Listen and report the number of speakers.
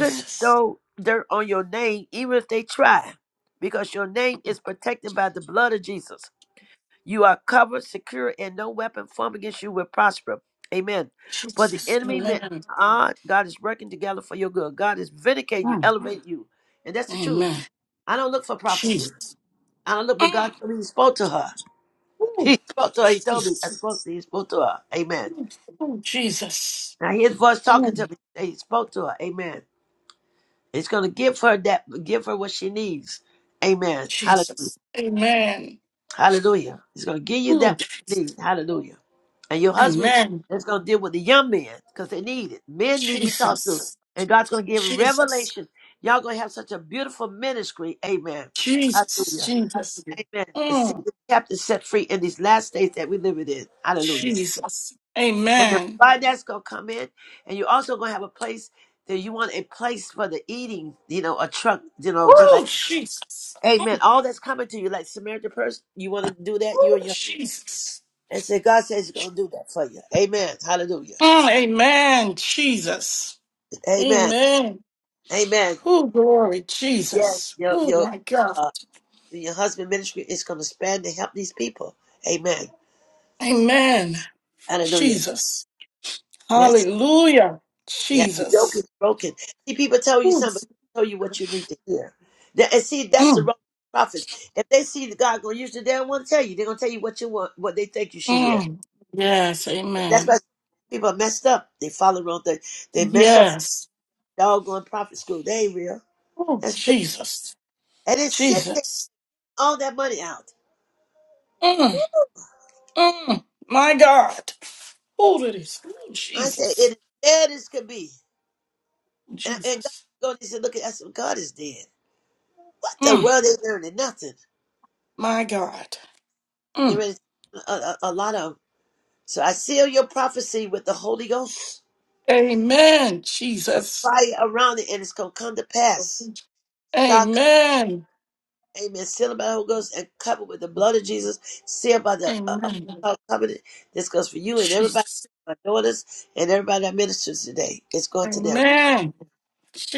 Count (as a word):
two